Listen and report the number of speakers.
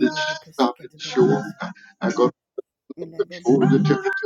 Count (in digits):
2